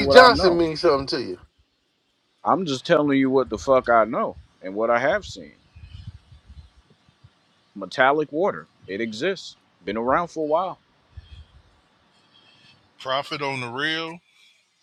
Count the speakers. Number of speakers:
three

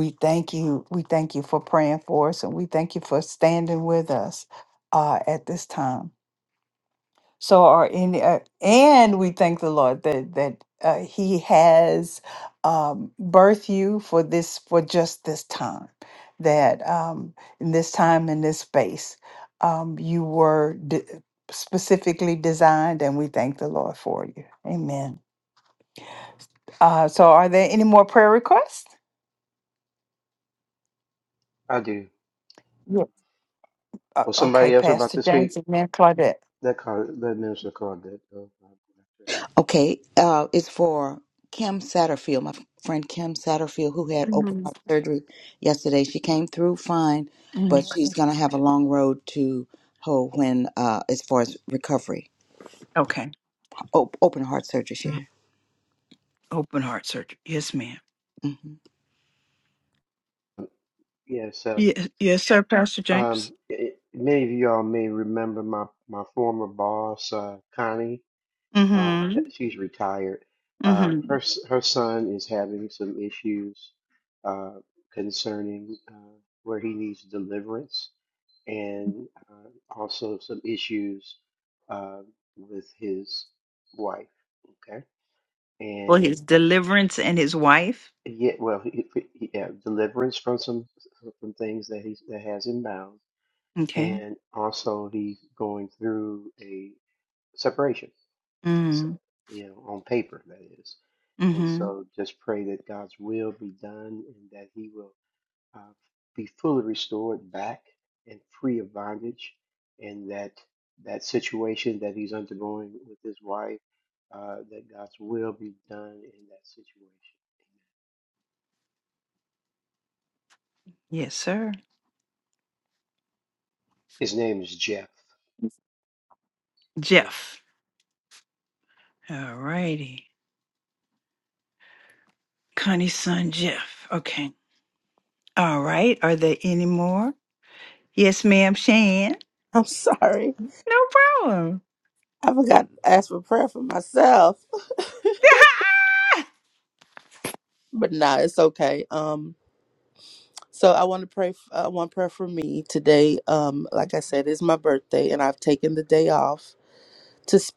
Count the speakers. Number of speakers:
four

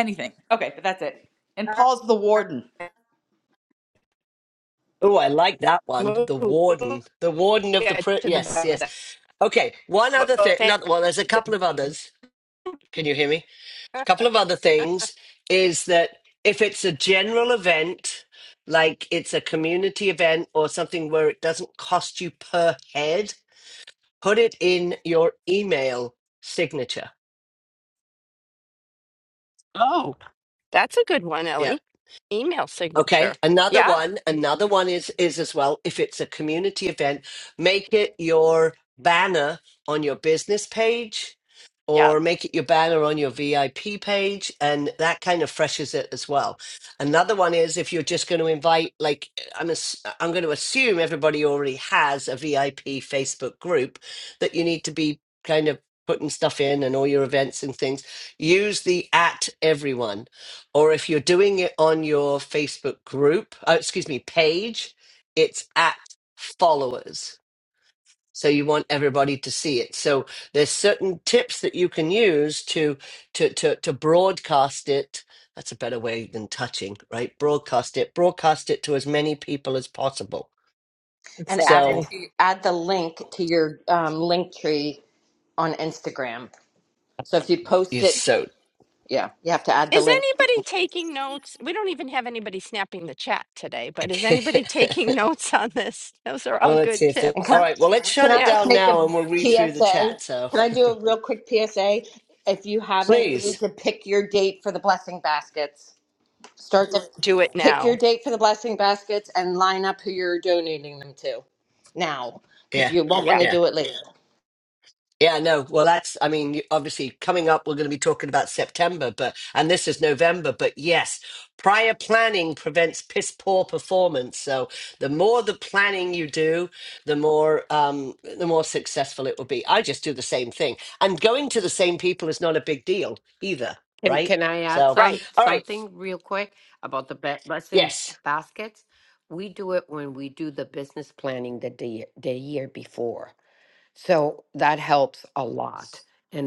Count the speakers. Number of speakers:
five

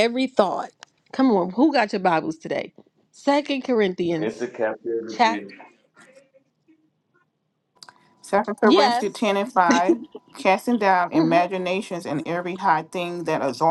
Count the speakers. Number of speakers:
three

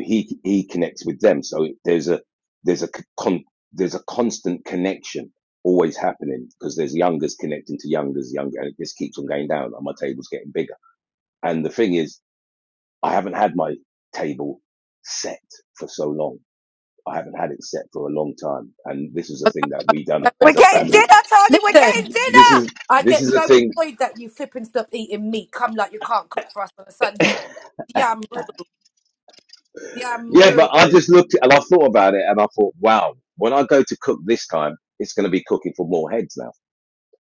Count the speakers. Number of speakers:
three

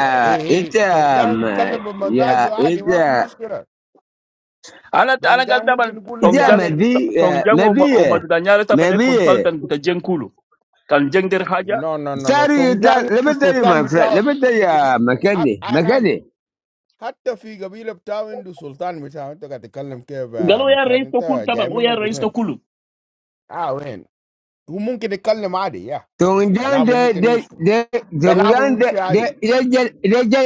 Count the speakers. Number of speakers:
three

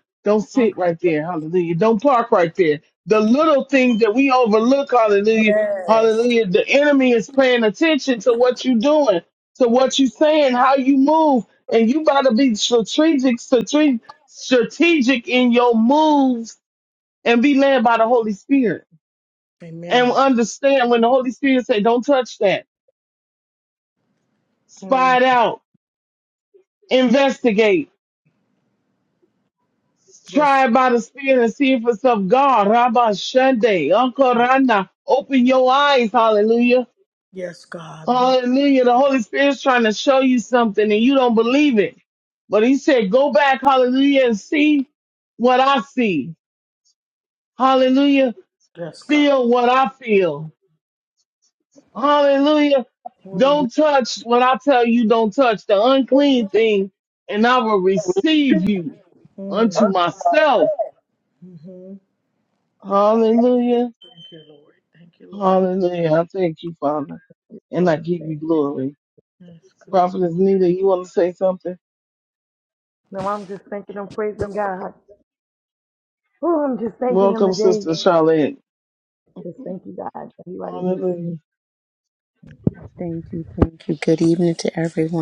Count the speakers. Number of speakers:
four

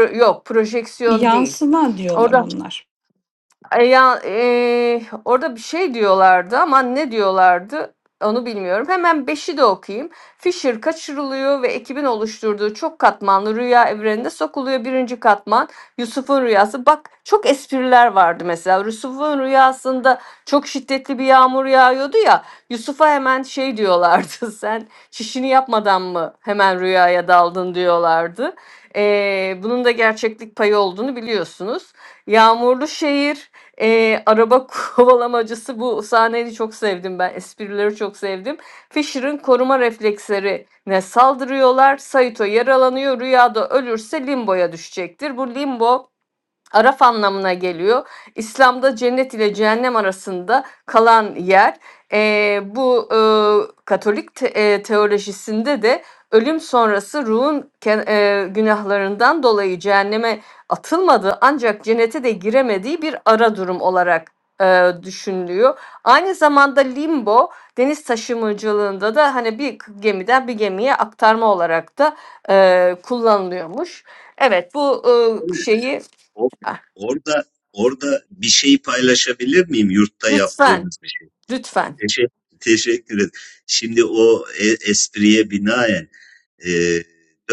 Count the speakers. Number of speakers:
three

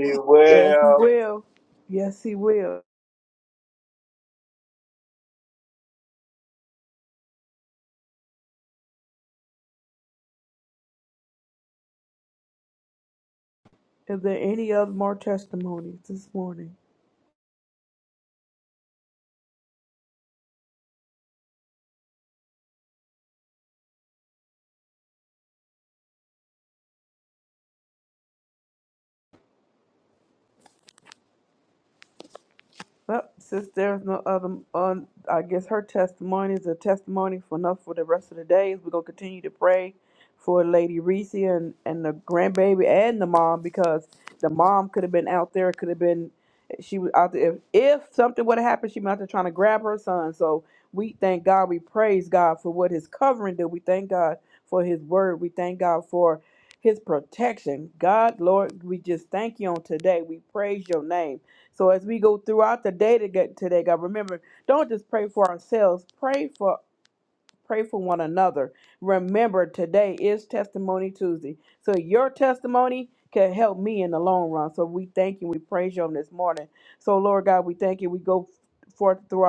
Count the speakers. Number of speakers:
two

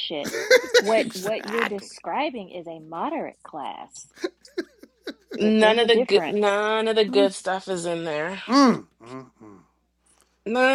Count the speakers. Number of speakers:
three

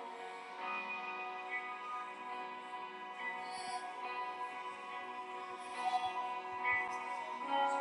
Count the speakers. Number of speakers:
zero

